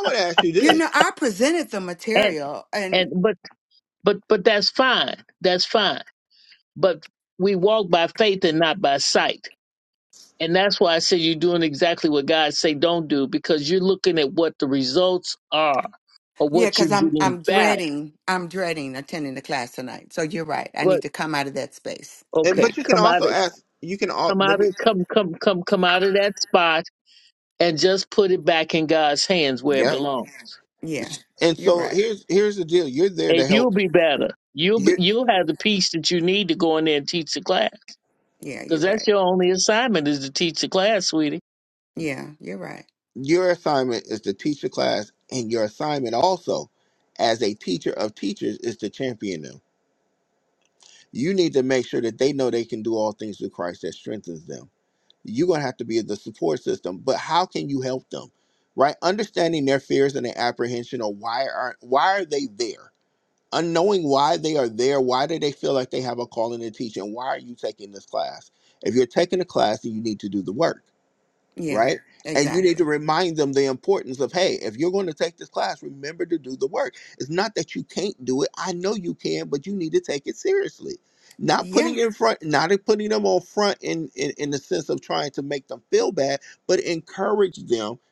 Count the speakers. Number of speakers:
3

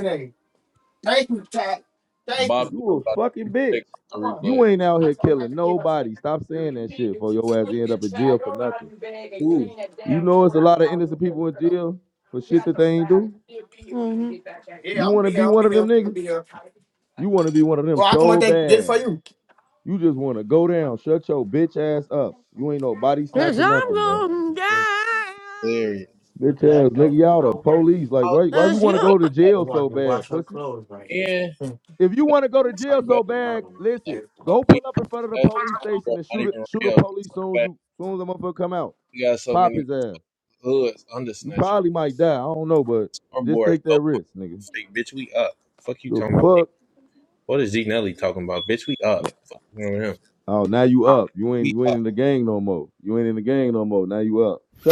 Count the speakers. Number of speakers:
4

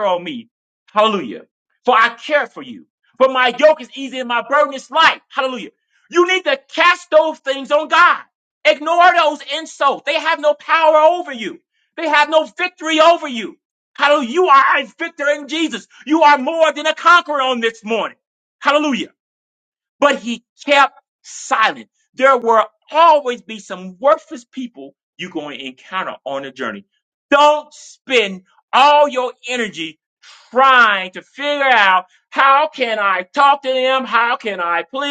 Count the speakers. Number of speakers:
1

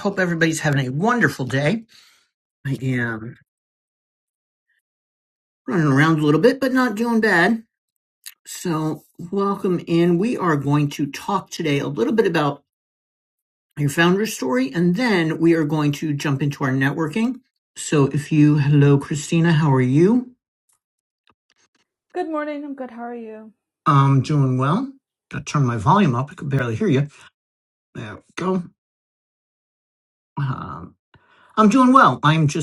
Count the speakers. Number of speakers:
2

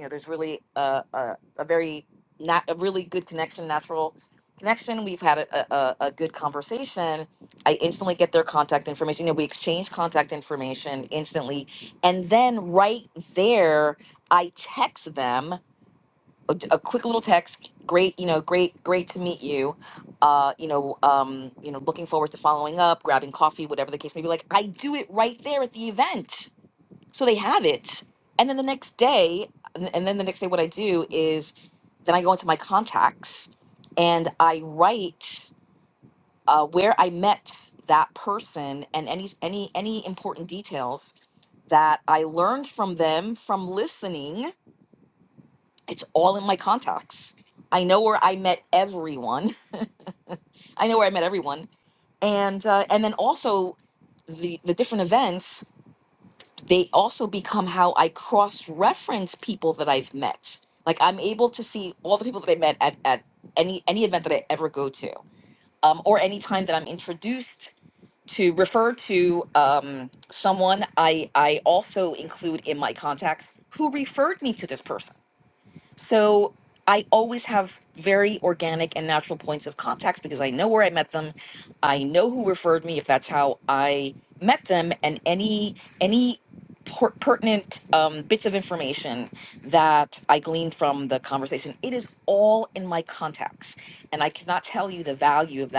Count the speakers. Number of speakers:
1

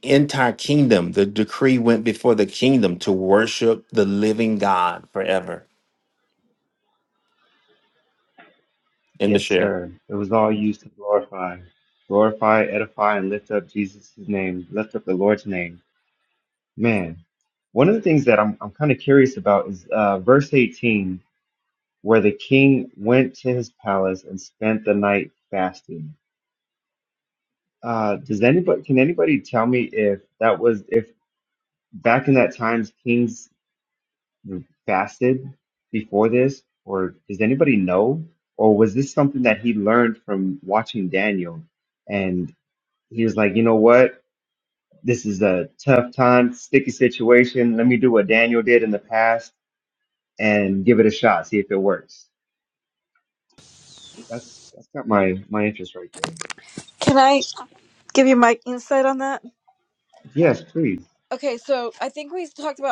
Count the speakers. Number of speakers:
3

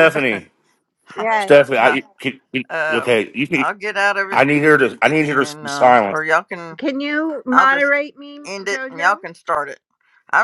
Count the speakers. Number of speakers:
3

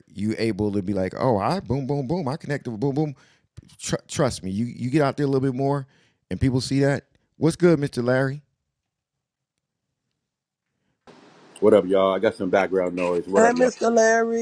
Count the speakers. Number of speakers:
3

